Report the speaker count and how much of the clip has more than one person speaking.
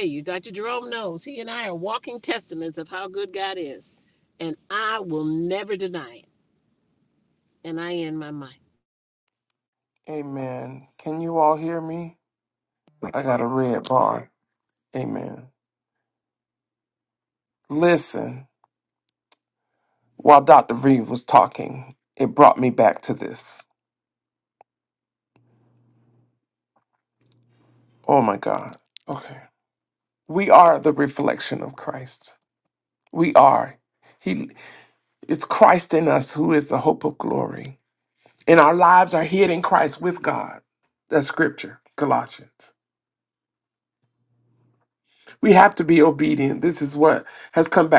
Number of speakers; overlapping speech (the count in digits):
2, no overlap